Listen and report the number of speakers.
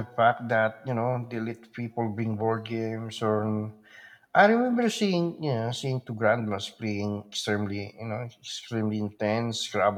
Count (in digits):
1